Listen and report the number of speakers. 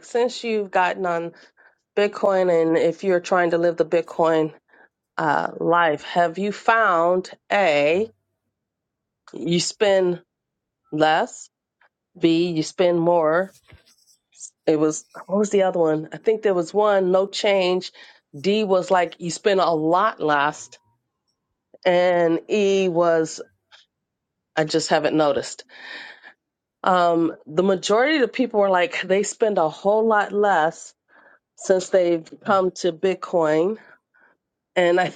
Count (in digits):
1